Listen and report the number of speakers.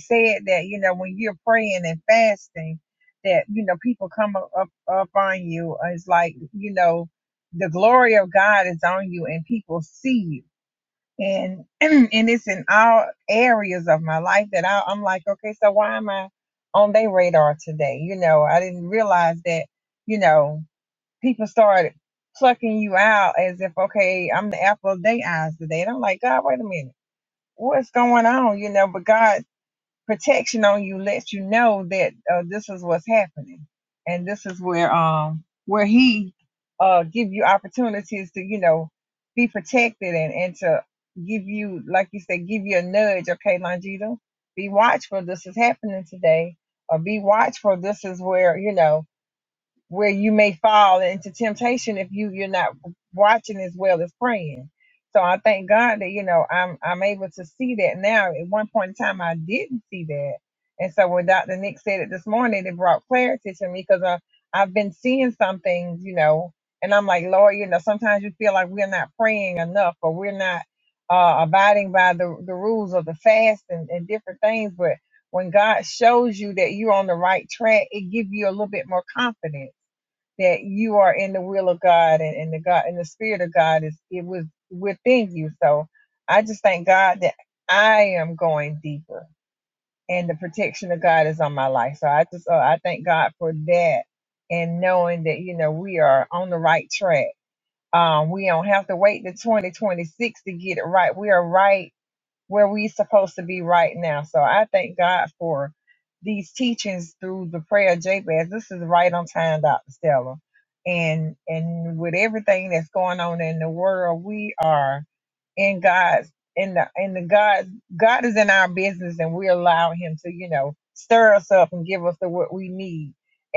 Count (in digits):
1